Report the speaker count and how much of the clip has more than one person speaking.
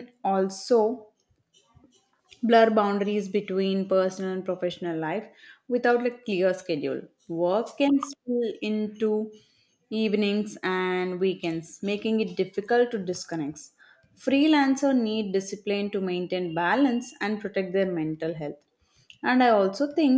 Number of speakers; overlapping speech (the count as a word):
one, no overlap